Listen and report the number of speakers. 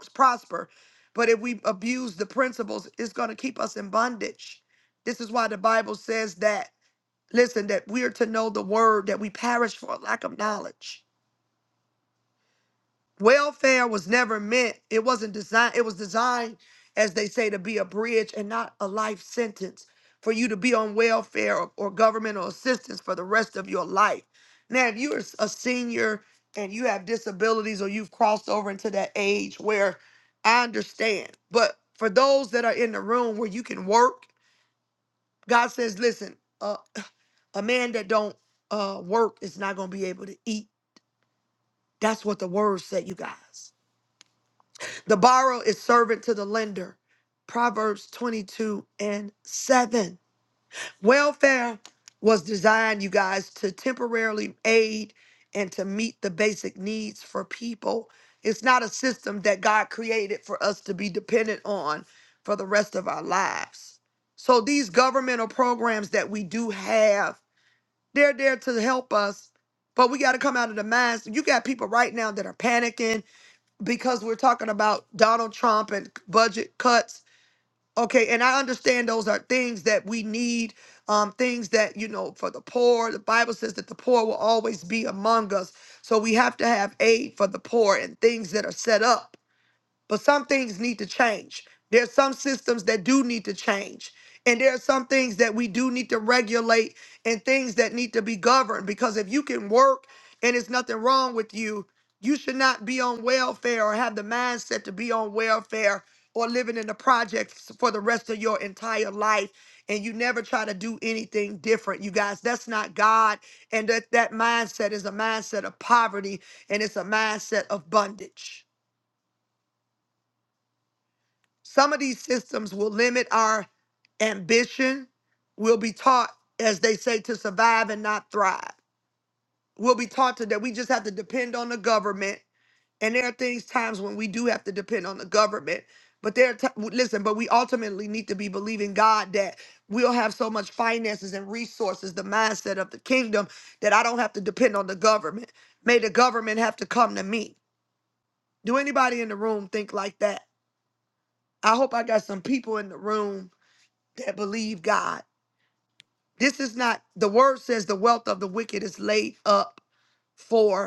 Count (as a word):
one